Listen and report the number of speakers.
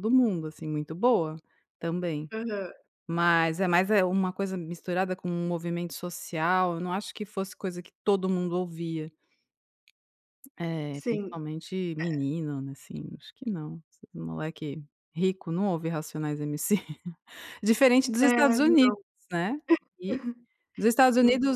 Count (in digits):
2